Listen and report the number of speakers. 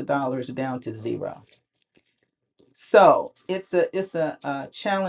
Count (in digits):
1